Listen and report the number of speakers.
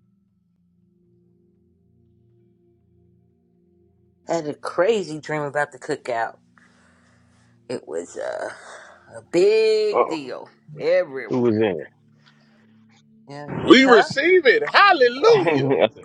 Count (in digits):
3